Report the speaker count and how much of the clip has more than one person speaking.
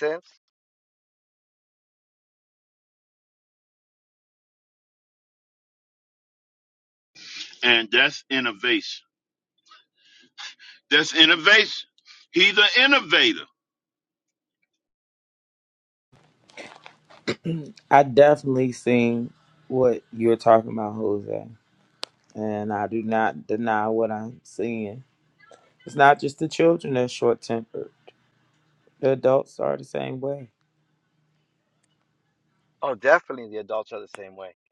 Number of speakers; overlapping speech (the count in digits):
3, no overlap